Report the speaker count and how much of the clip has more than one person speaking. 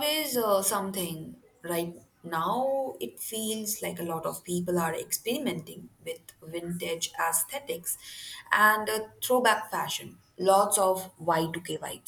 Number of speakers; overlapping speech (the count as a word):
one, no overlap